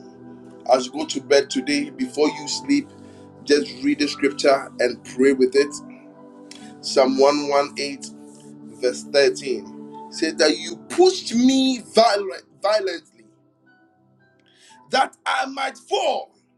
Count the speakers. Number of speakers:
1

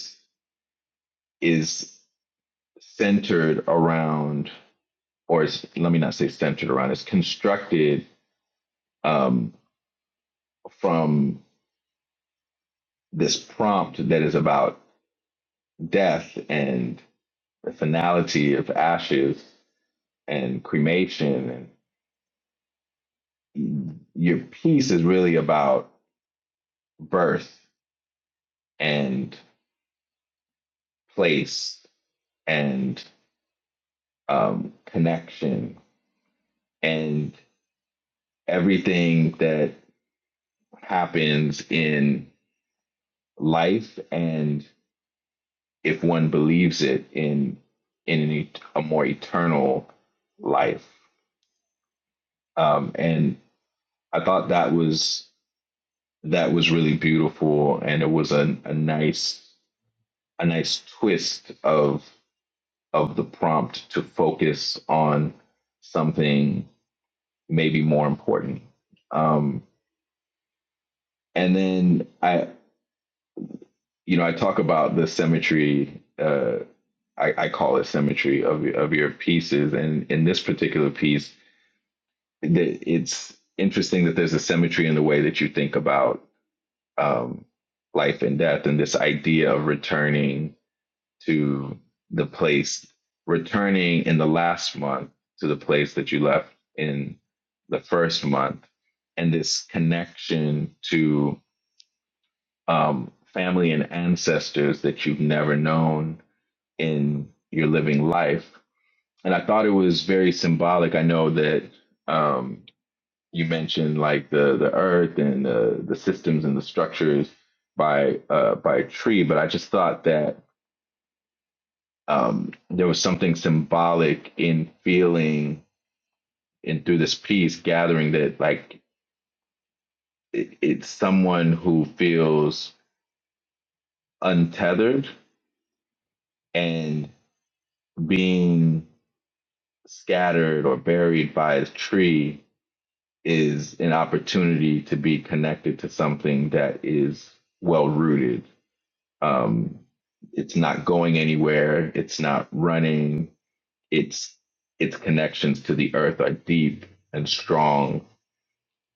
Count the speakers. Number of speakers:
1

